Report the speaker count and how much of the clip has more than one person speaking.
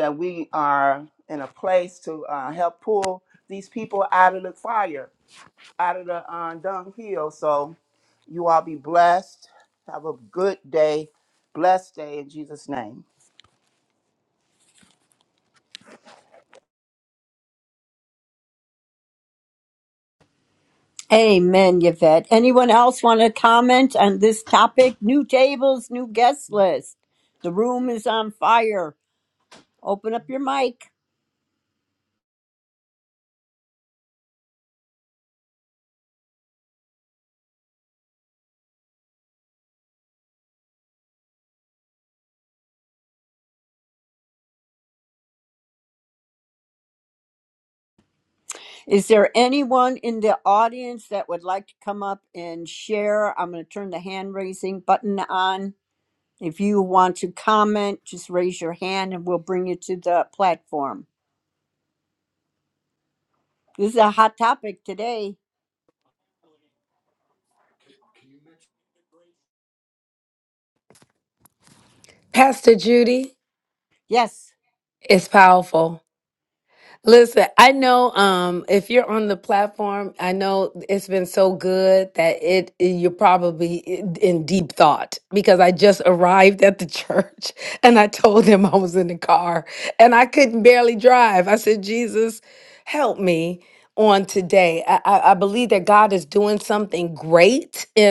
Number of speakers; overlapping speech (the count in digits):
3, no overlap